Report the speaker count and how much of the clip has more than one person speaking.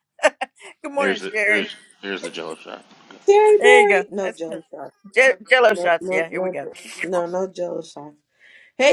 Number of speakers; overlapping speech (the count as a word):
three, about 28%